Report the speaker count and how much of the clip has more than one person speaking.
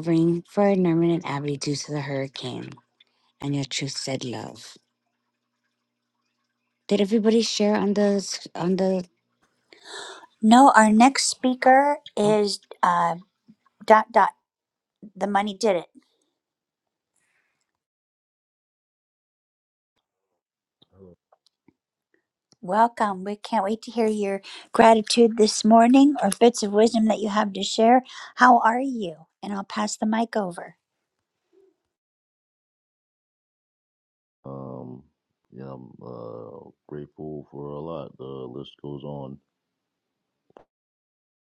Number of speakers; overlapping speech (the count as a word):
three, under 1%